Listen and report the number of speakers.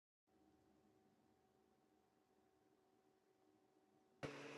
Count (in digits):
0